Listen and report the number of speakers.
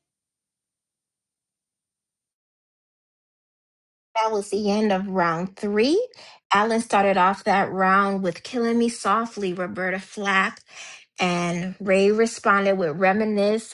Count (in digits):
1